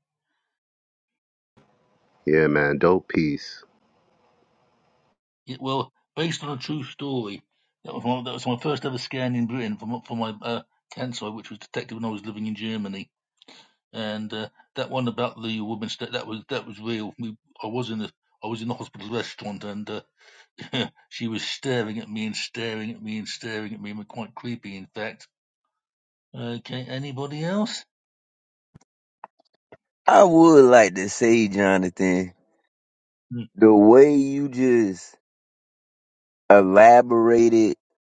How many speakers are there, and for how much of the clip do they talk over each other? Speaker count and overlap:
3, no overlap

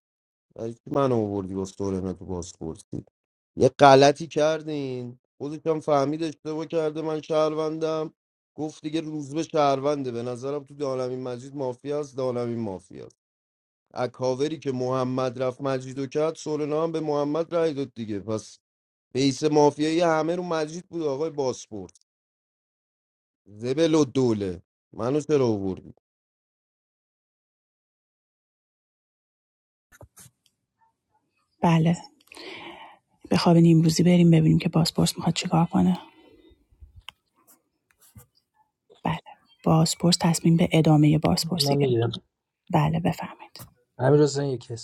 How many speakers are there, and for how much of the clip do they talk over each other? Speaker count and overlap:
3, about 1%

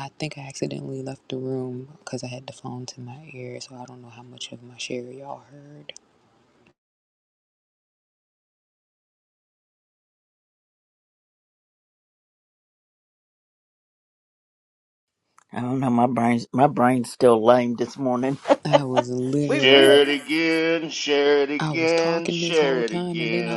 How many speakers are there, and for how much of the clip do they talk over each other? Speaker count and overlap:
3, about 11%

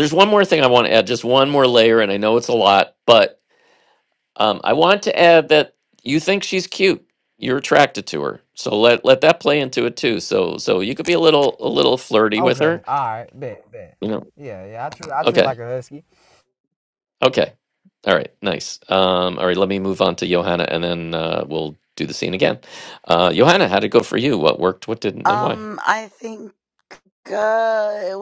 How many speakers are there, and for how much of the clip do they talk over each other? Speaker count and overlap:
3, about 4%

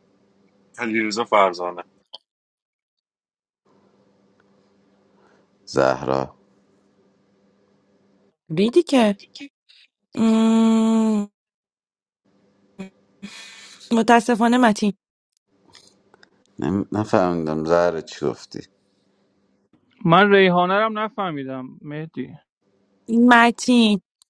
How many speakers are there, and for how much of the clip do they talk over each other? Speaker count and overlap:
4, no overlap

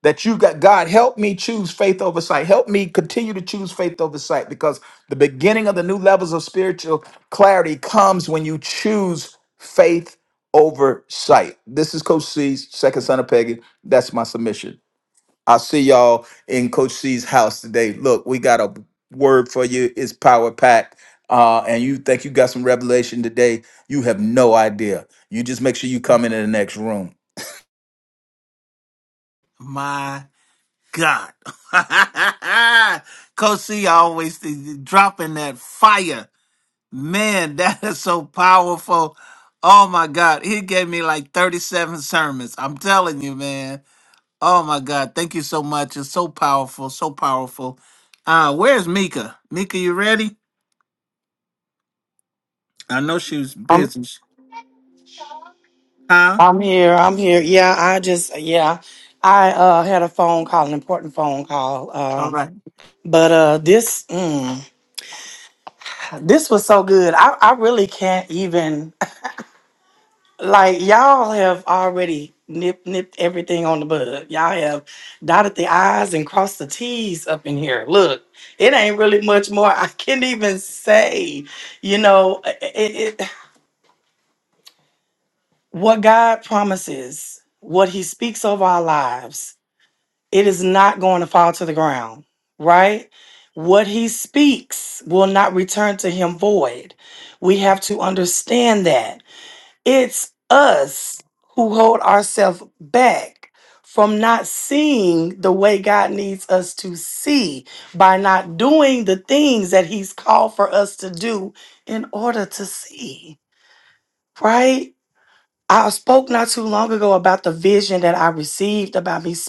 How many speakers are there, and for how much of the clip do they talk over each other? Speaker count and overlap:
3, under 1%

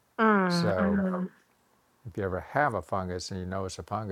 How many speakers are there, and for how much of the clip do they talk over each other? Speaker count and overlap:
2, about 12%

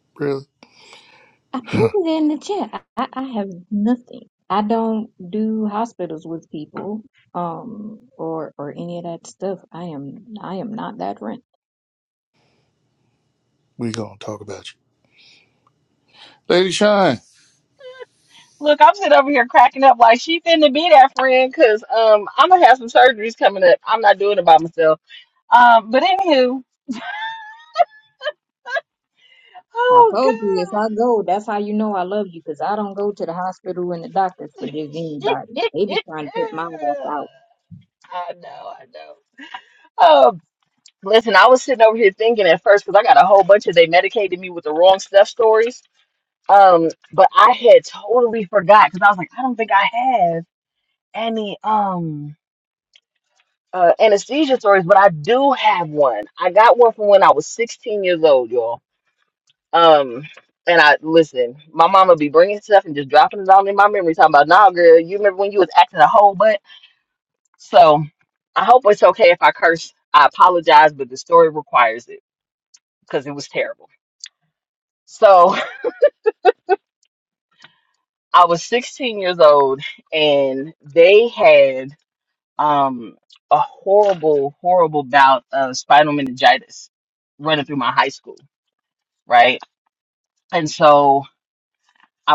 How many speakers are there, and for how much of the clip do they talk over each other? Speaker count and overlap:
3, about 1%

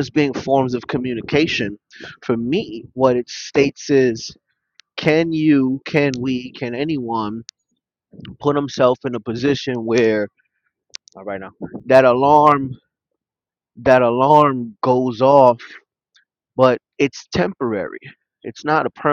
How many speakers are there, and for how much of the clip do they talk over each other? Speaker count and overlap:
1, no overlap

